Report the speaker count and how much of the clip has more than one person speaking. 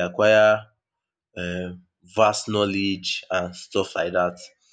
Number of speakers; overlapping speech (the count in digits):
1, no overlap